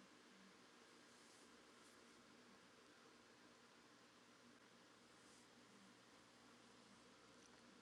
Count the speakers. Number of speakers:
zero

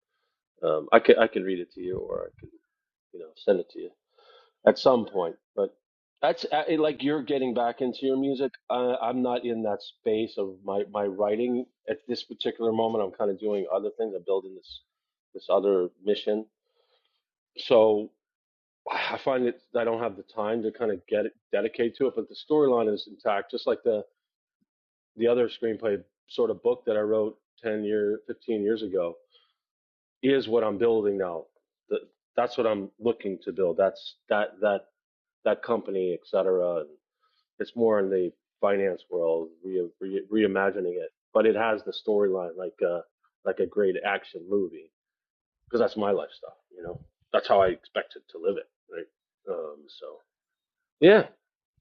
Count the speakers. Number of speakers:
one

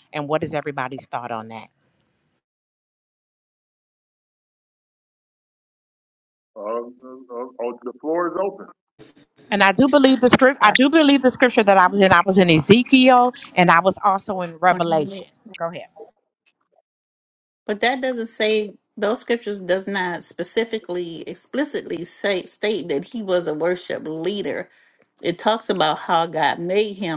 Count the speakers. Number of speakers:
three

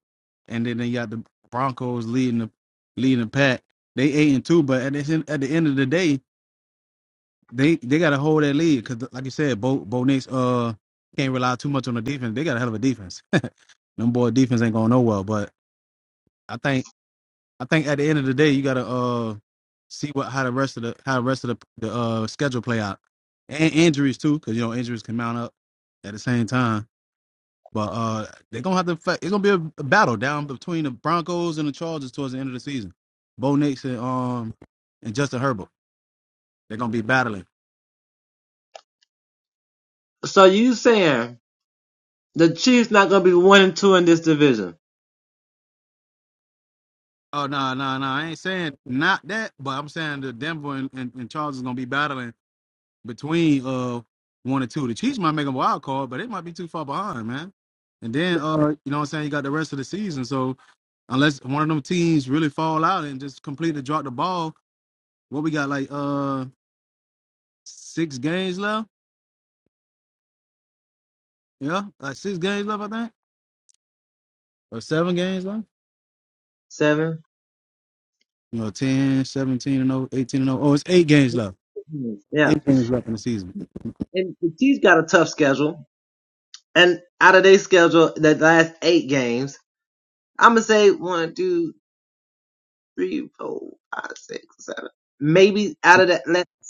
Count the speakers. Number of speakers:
two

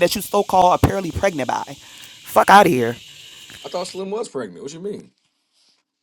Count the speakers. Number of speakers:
two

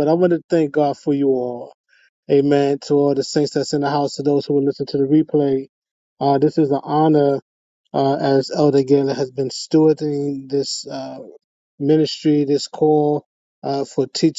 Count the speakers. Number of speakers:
one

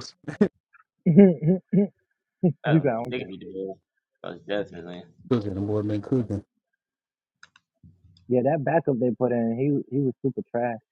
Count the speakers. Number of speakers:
three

